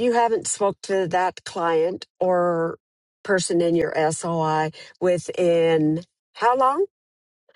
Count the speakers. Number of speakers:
1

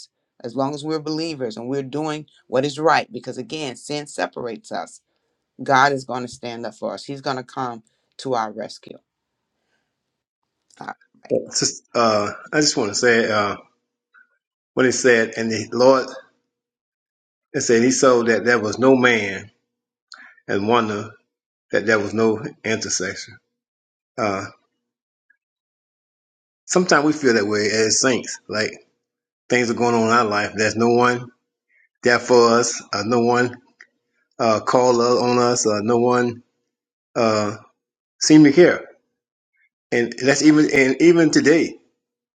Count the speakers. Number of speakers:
2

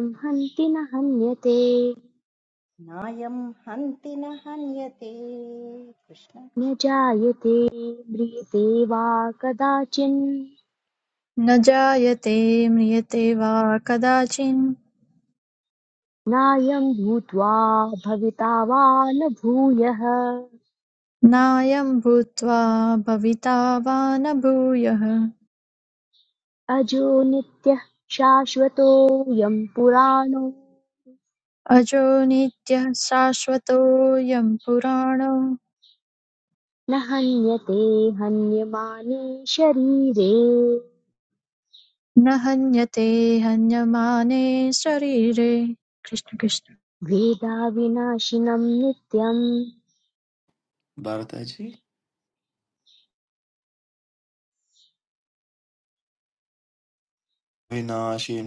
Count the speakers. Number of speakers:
4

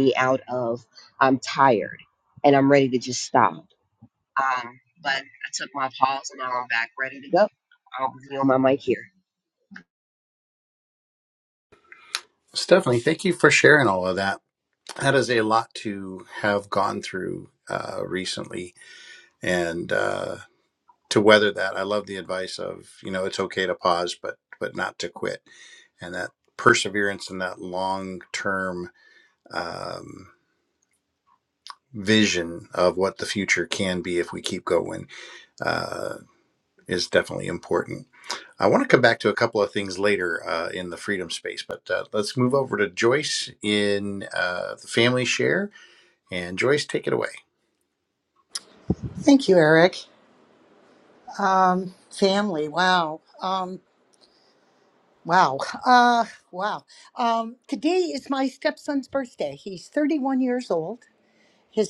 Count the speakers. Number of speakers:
3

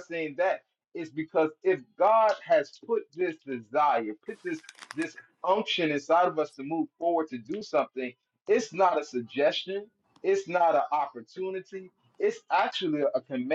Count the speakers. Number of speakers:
1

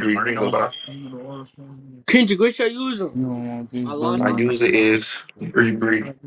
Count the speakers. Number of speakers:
3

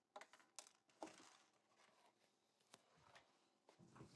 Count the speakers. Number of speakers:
0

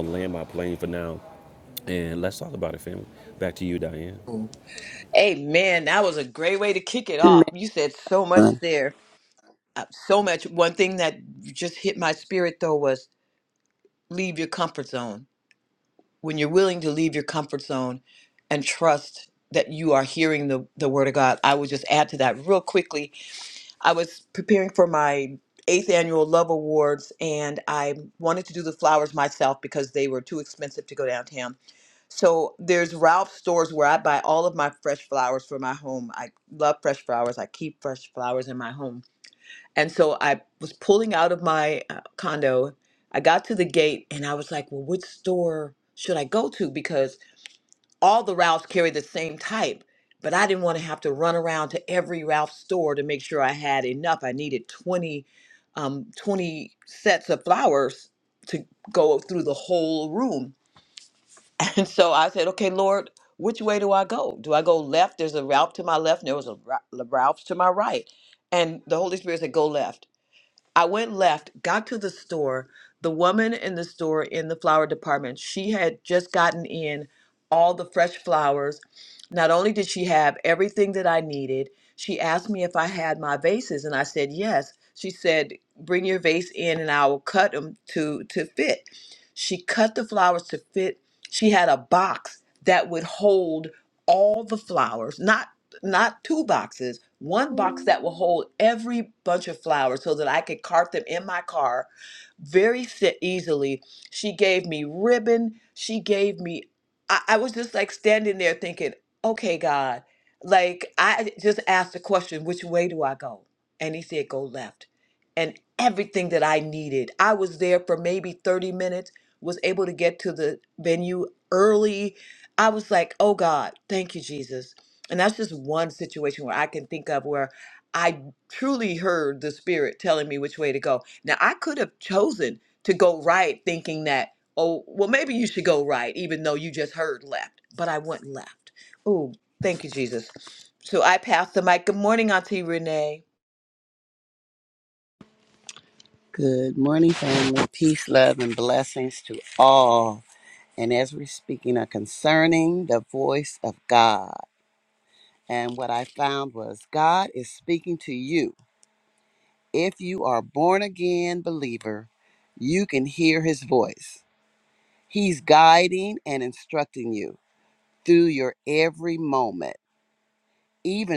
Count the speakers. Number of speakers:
3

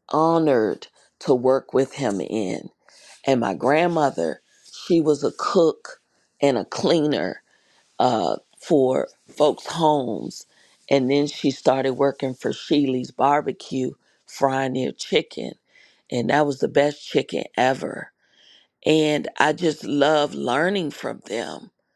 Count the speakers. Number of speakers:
1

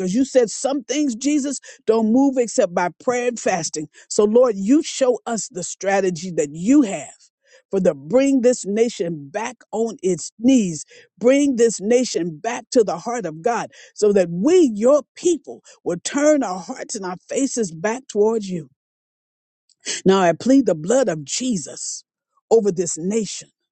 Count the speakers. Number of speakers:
1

